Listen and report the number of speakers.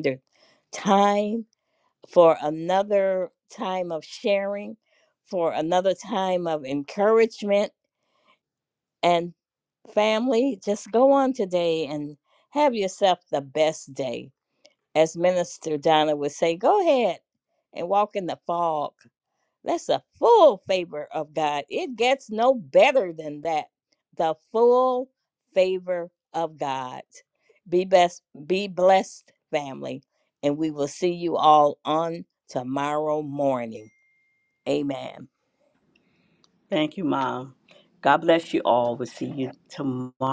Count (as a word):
two